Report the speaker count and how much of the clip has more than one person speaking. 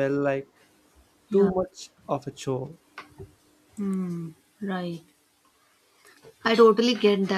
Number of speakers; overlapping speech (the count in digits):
2, about 3%